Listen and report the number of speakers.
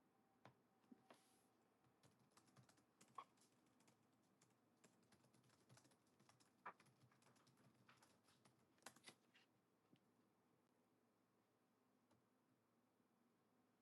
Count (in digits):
0